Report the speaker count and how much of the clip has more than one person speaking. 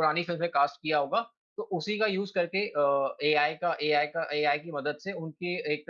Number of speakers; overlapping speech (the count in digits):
1, no overlap